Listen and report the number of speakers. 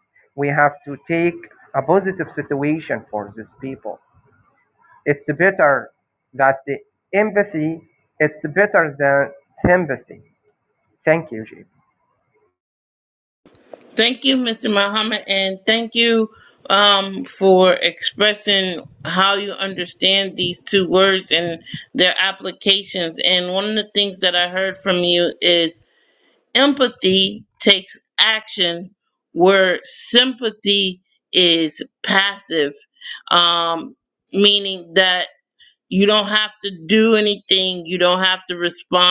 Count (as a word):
two